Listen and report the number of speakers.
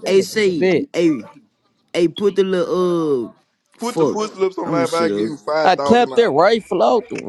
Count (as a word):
three